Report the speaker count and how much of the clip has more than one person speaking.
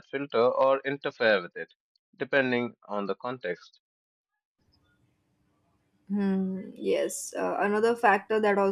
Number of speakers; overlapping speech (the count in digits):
2, no overlap